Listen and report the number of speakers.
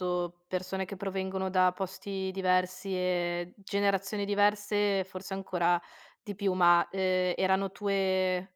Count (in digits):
1